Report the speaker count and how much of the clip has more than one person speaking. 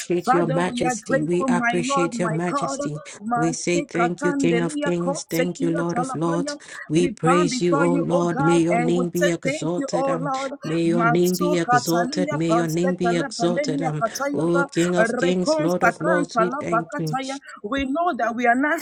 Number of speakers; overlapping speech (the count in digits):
2, about 80%